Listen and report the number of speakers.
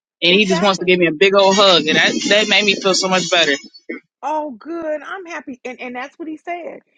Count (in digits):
2